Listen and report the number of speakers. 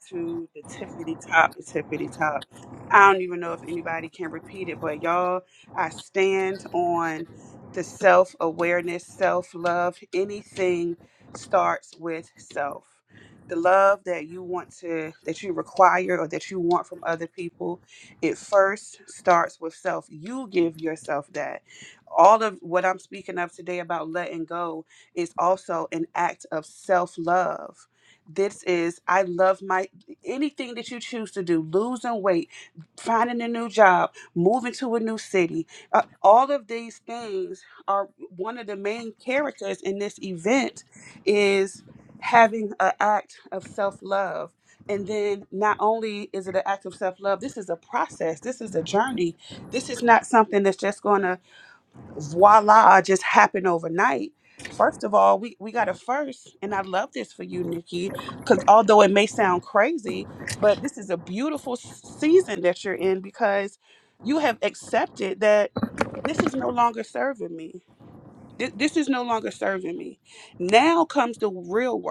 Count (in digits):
1